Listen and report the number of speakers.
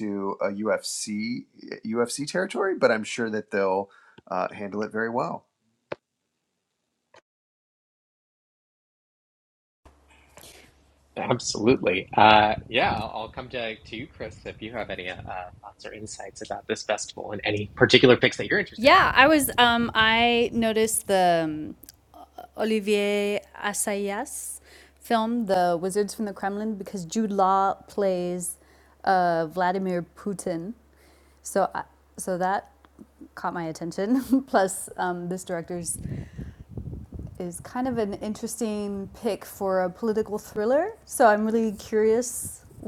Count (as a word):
three